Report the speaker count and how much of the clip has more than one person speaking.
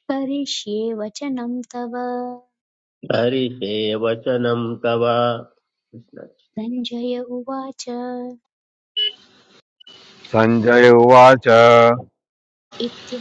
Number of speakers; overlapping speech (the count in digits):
3, no overlap